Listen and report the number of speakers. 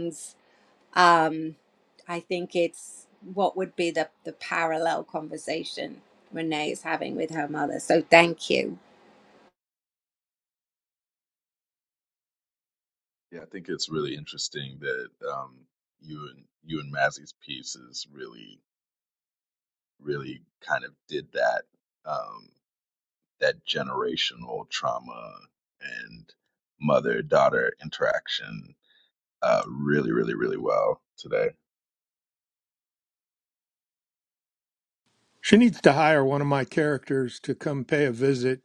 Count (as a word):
three